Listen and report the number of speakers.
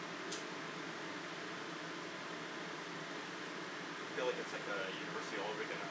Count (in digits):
1